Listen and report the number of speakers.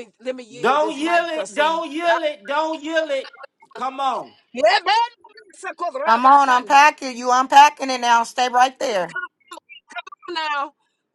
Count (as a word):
three